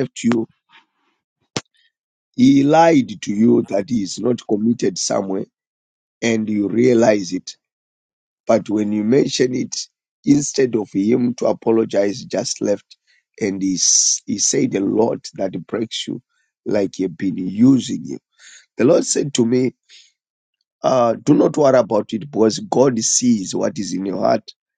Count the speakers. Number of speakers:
1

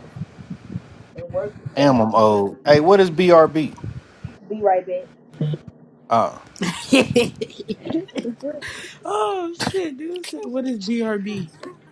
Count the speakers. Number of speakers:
3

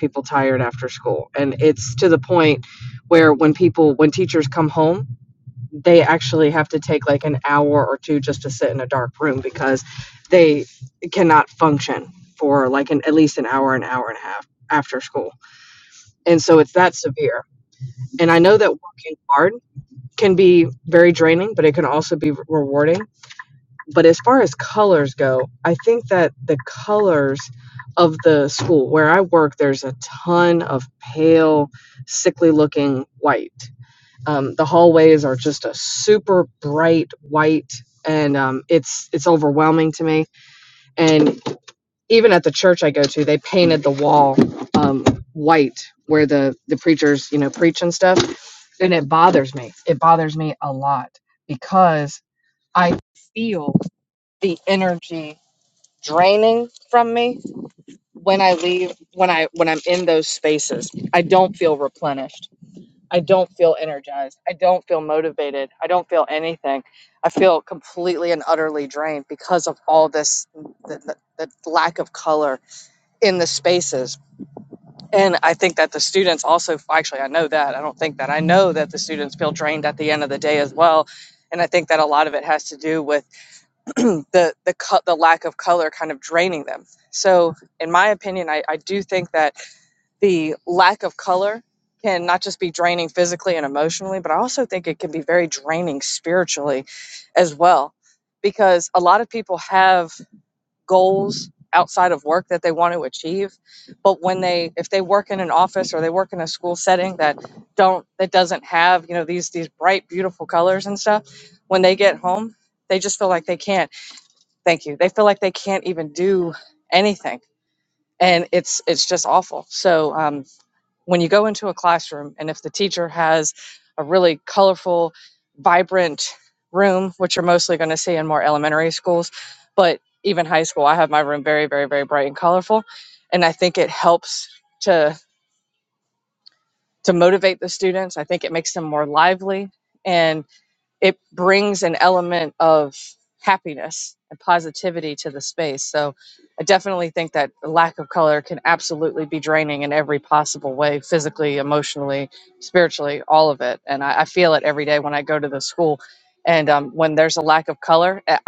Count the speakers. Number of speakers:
1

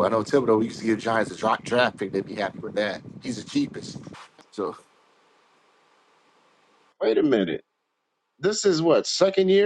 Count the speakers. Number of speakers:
2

